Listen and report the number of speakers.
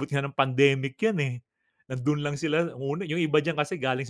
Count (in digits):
1